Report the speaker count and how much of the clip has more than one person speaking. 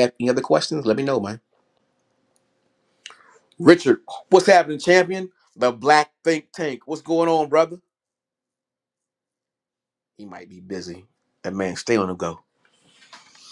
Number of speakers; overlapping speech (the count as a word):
one, no overlap